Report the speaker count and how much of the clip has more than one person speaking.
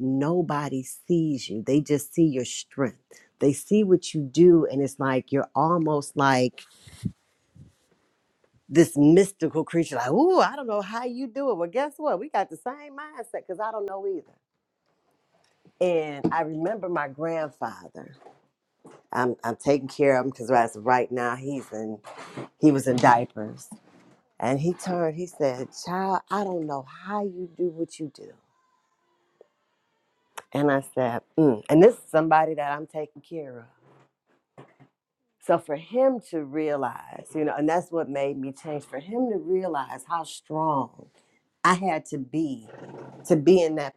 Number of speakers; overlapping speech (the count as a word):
one, no overlap